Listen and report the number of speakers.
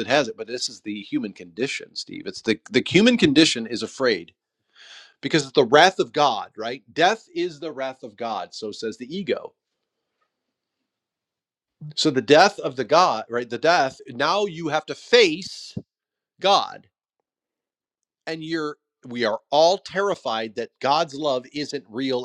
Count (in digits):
1